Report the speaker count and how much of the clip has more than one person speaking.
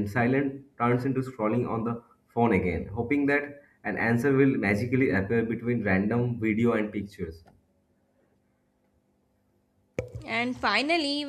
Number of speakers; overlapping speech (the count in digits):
2, no overlap